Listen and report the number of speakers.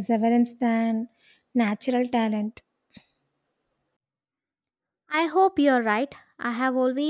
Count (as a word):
two